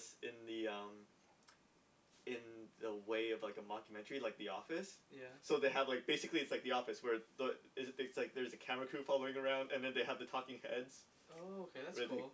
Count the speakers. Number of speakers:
2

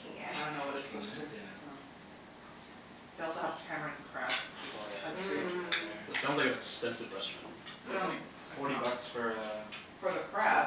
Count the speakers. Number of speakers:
4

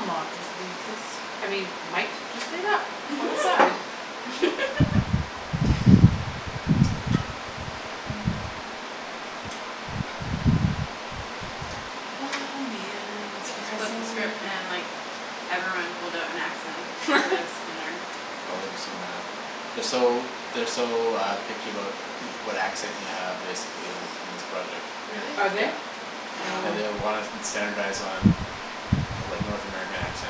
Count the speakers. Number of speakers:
3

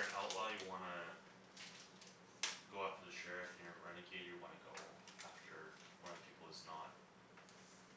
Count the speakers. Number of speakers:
1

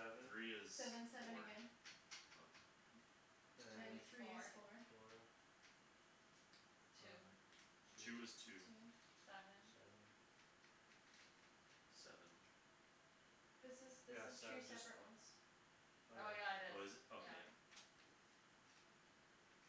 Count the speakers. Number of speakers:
4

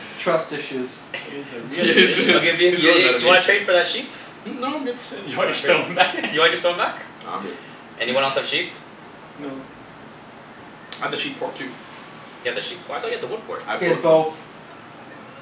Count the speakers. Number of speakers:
4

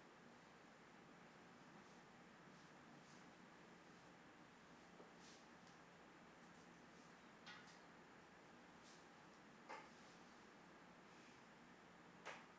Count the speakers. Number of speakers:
0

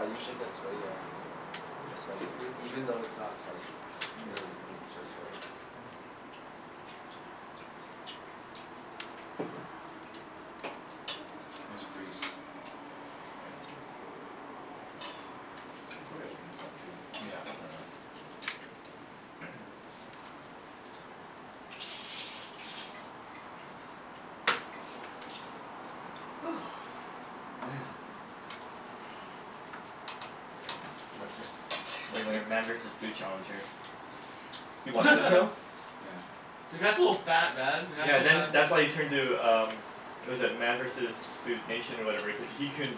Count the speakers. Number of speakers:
4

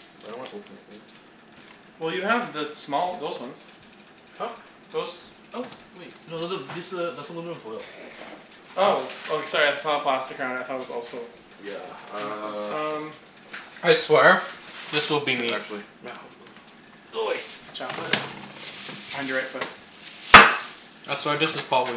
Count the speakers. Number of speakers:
3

